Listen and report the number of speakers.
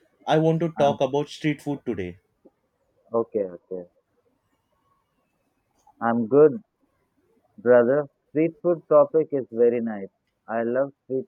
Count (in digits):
2